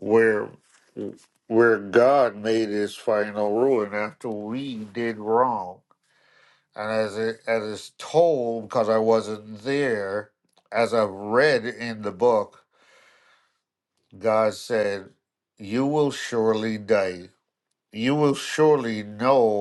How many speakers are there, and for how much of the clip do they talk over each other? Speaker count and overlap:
one, no overlap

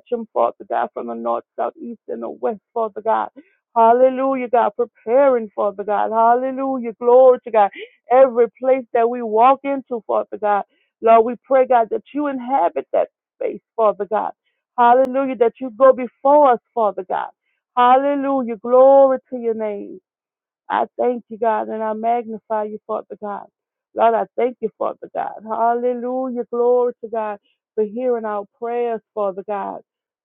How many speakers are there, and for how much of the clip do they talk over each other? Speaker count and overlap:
one, no overlap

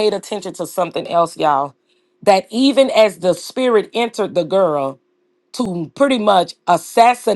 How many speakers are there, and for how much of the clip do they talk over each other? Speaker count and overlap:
one, no overlap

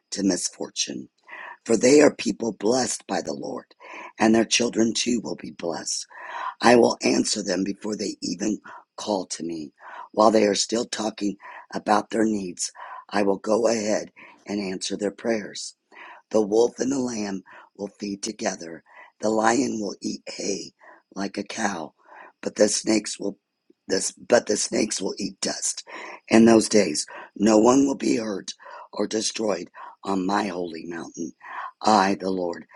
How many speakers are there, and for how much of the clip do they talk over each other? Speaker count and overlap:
one, no overlap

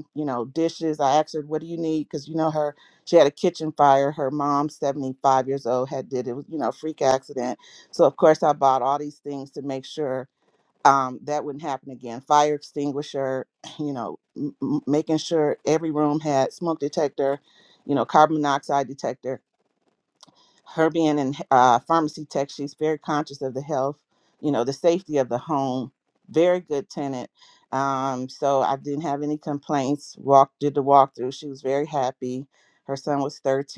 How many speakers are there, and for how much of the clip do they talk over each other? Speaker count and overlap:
one, no overlap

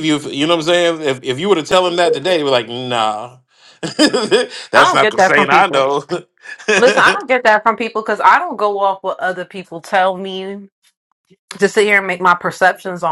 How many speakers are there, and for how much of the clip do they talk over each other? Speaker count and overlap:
two, about 8%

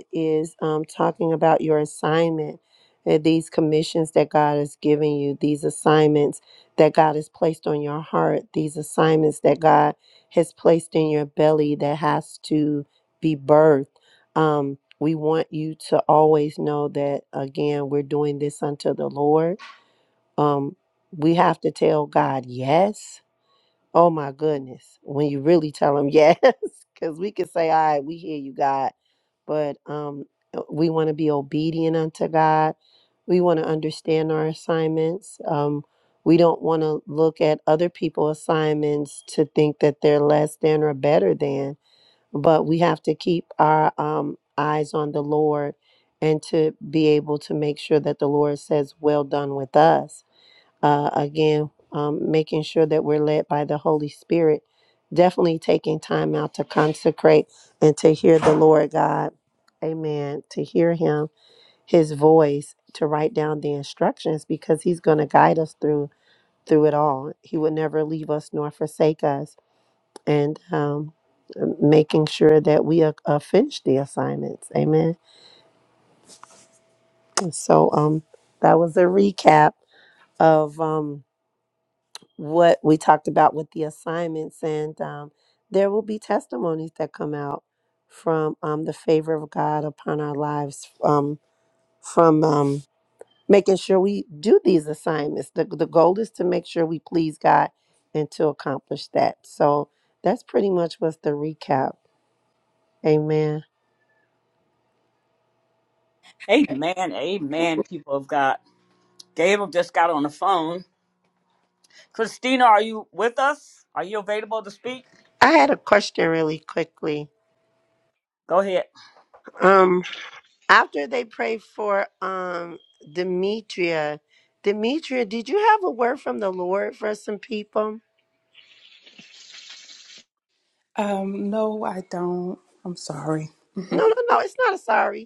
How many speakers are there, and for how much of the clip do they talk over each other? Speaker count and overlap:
three, no overlap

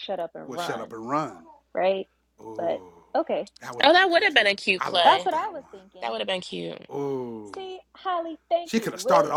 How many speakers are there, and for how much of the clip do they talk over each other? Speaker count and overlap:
three, about 33%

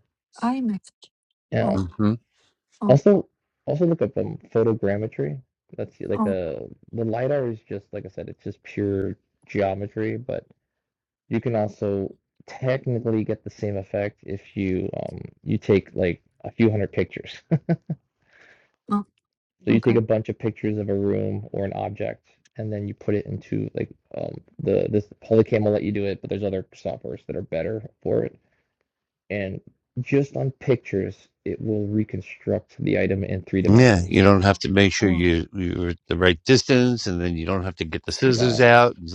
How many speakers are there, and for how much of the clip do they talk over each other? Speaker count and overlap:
three, about 5%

